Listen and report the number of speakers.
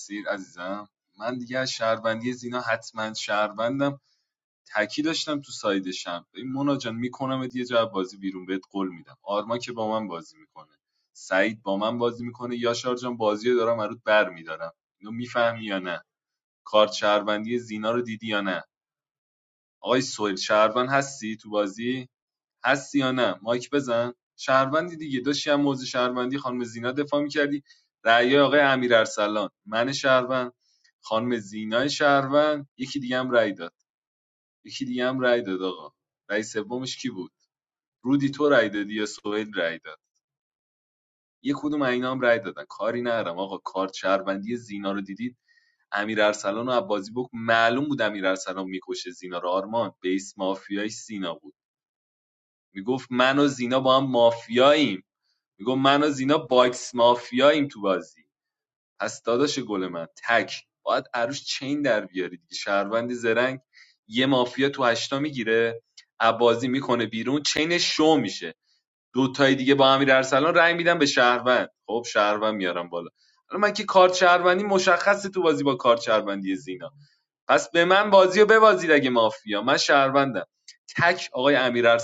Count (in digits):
1